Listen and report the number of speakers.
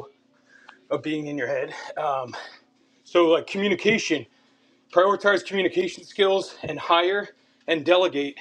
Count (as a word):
one